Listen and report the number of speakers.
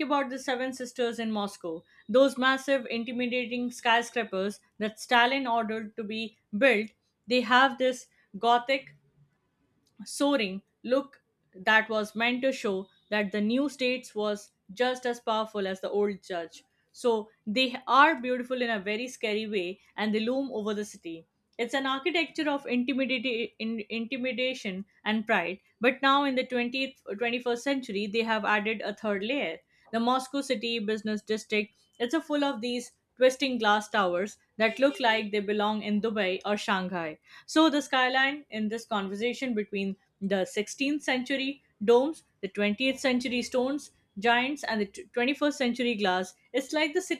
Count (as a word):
one